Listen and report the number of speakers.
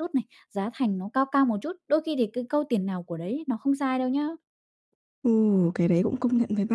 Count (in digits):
2